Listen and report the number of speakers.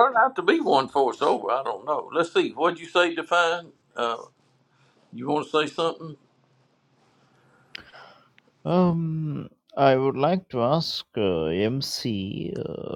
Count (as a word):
two